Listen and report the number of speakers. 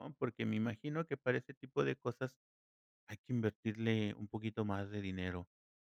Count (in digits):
1